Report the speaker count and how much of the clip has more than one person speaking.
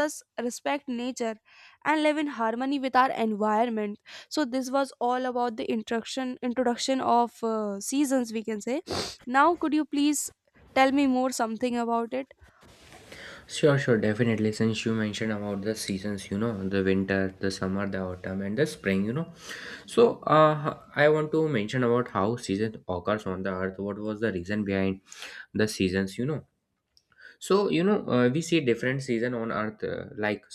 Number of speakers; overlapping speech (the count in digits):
2, no overlap